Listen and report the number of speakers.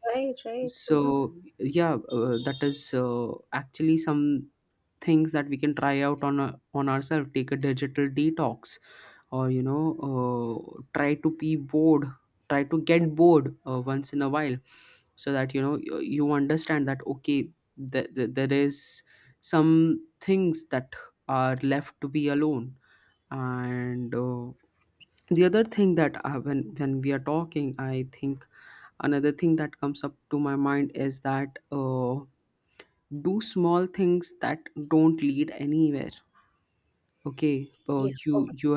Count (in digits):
2